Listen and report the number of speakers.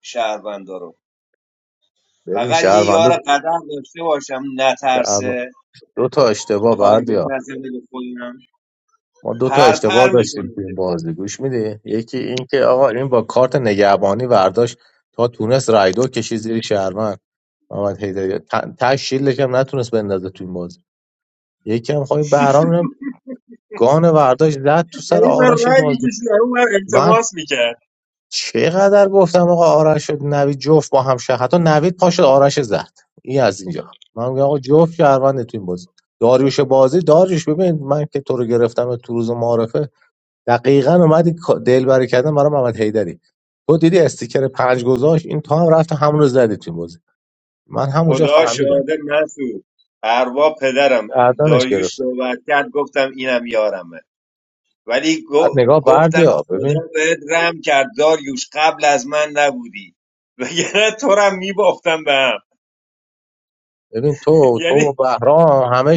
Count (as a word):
two